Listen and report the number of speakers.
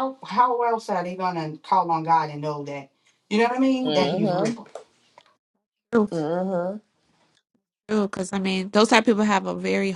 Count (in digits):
3